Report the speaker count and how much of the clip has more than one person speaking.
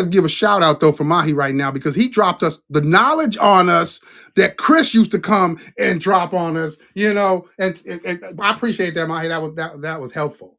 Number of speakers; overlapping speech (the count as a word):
one, no overlap